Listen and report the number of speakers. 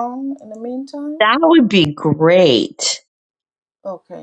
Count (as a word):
two